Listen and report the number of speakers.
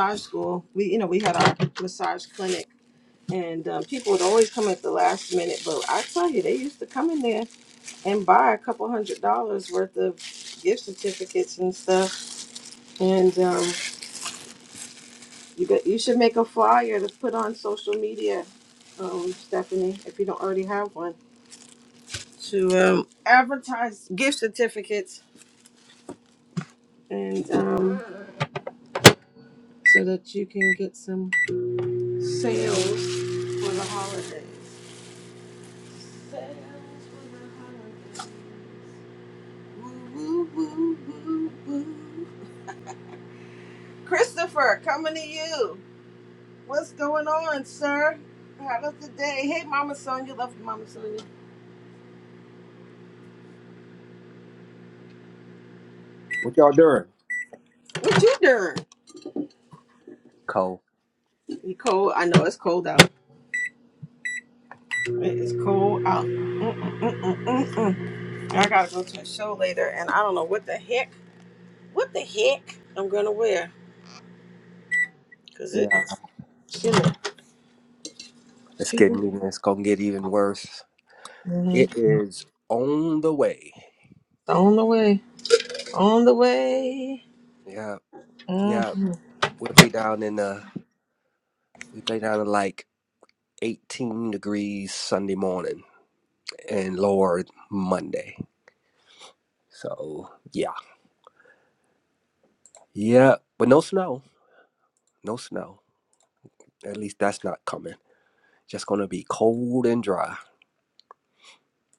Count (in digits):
2